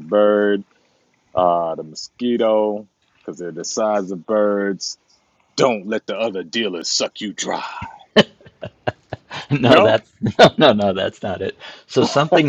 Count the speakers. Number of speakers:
2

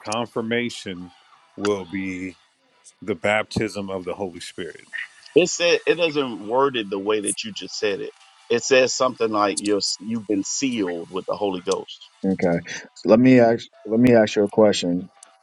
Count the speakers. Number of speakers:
3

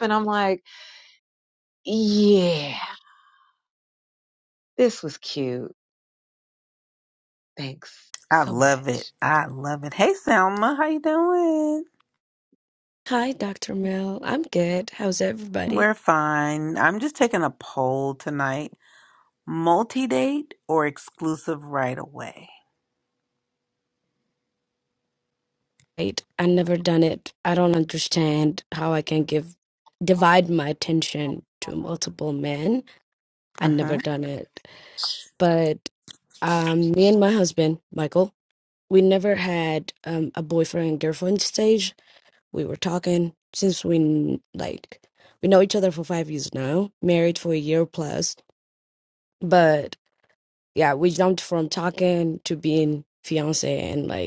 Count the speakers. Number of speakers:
3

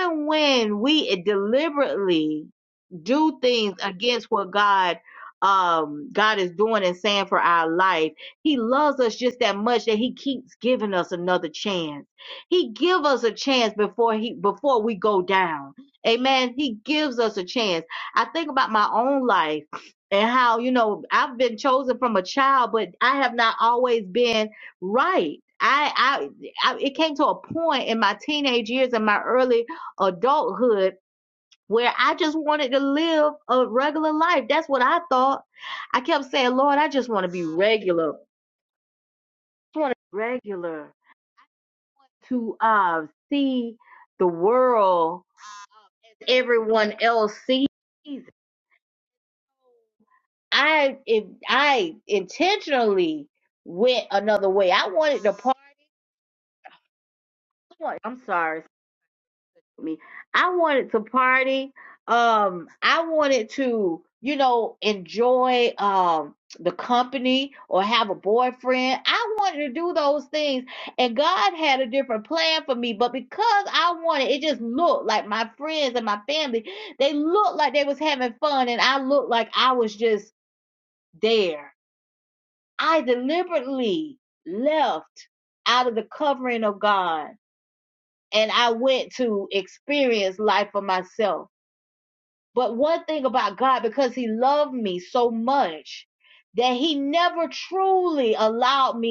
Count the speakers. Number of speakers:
1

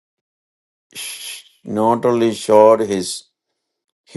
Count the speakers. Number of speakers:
1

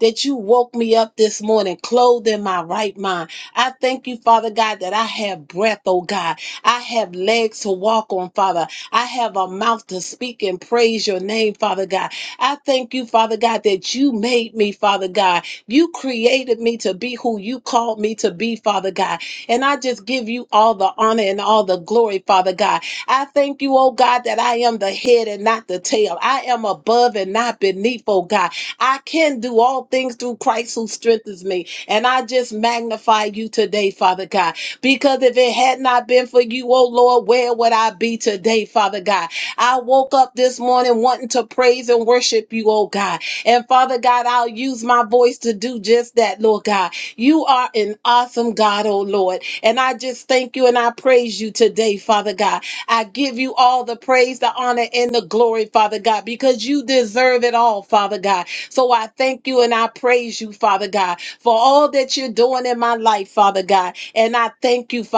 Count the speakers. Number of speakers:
1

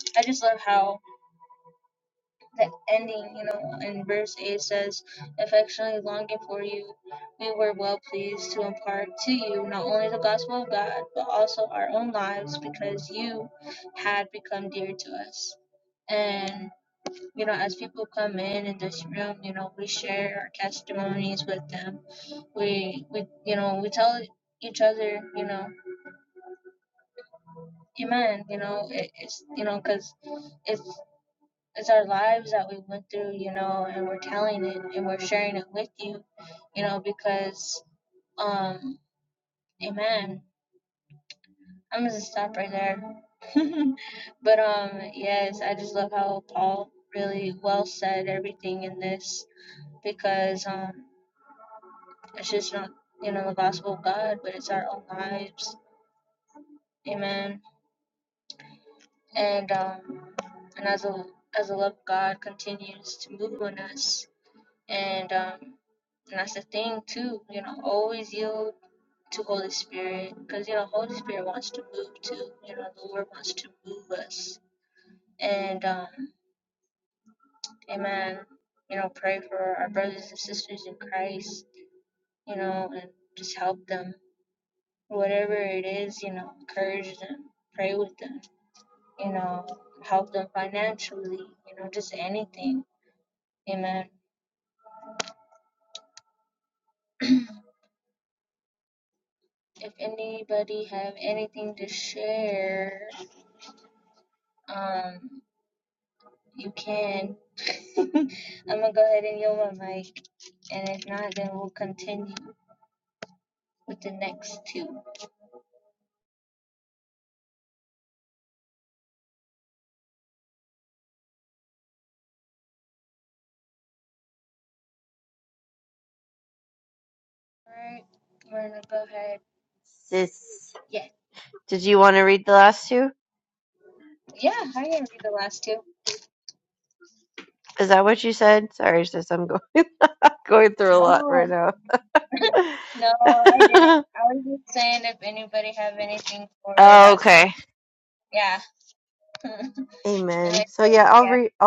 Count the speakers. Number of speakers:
2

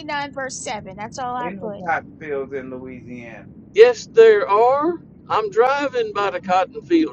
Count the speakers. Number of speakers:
3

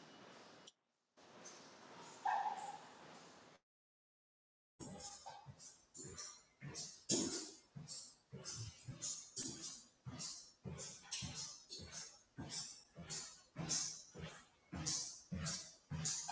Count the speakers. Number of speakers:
0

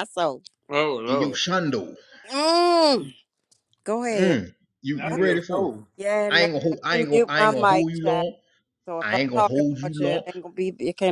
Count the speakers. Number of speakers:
3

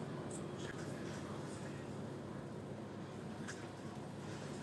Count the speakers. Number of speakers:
0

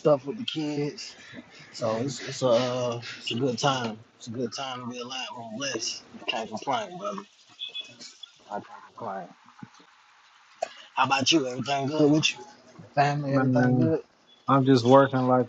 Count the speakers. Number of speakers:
2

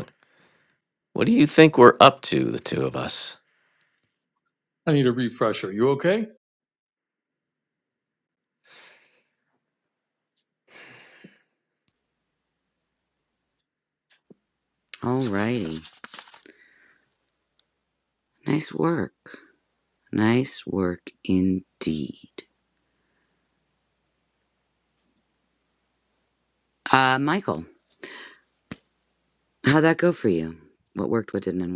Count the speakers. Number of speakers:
3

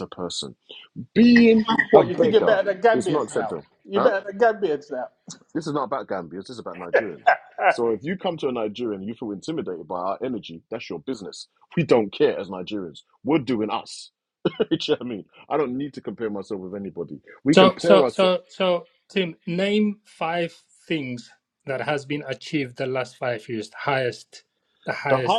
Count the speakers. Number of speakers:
3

